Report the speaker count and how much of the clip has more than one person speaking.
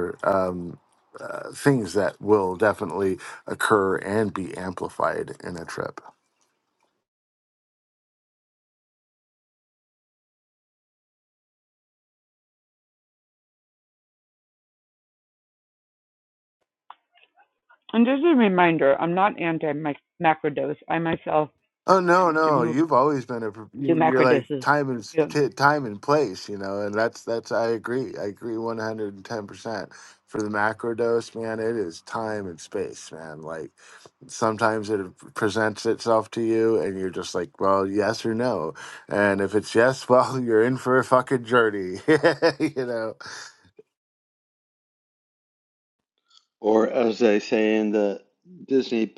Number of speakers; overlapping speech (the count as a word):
three, about 2%